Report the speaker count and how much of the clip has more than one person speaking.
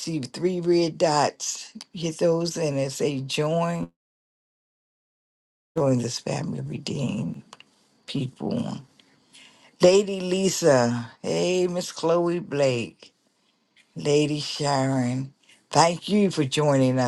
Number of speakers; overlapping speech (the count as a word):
one, no overlap